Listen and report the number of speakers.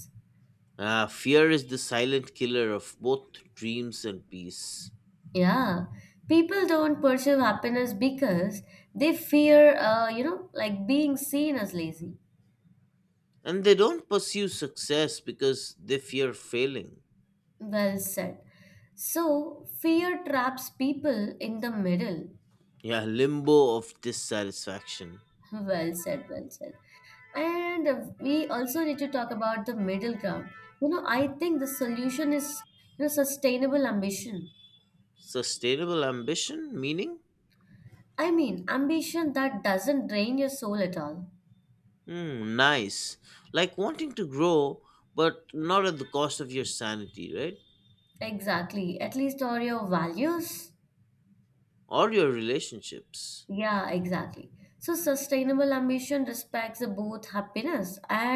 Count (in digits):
2